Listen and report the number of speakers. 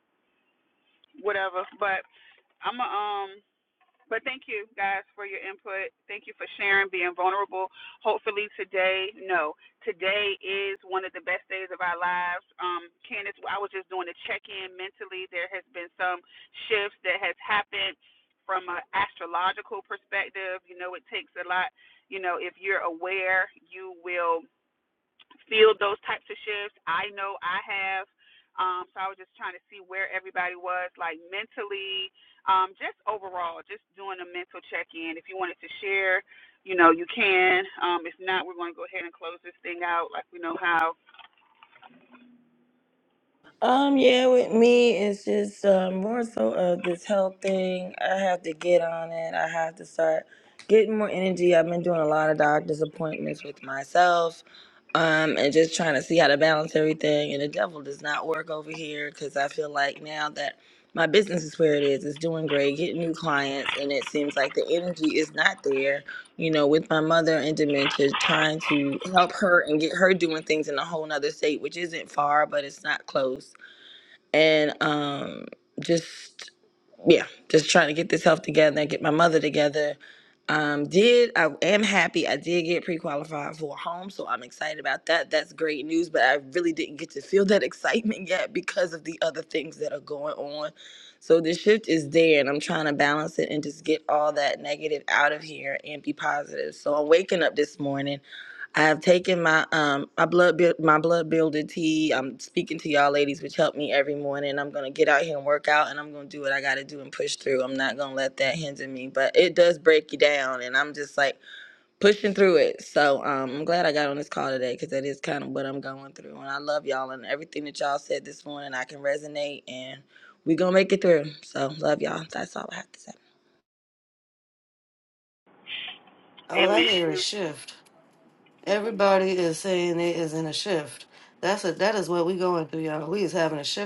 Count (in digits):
3